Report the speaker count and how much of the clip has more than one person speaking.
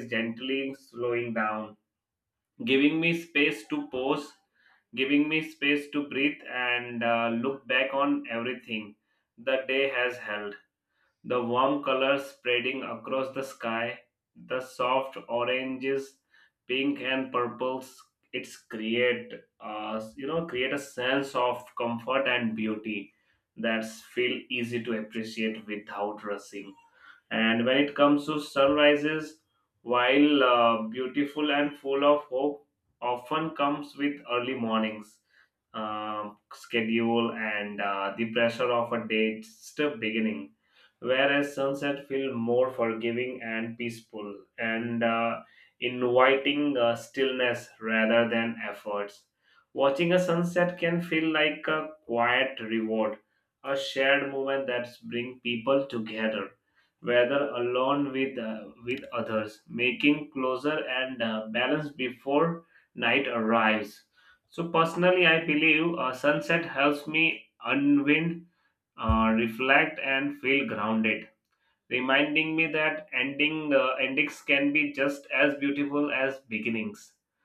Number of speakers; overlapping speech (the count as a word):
one, no overlap